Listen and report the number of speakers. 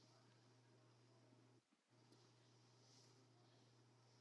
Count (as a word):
zero